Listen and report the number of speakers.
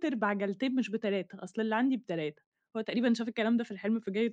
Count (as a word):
one